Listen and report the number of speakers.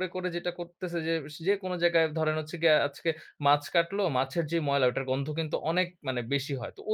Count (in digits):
1